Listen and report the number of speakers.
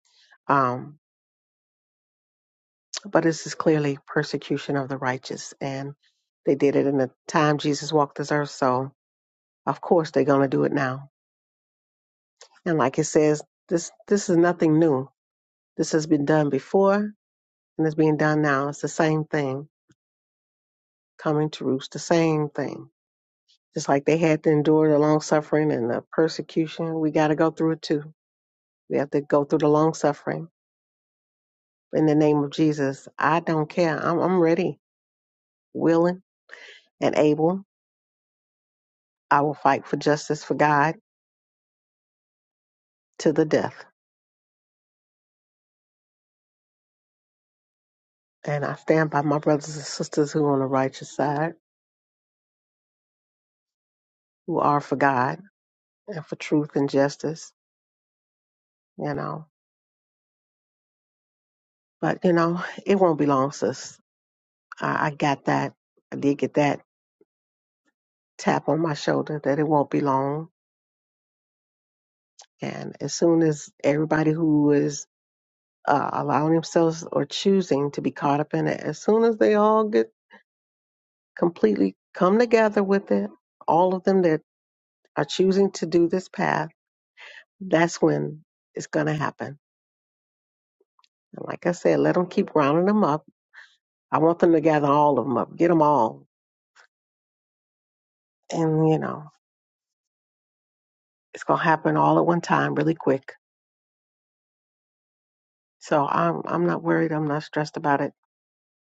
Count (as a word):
one